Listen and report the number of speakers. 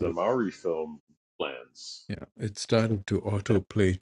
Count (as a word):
two